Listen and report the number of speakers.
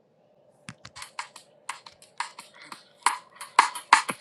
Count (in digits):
0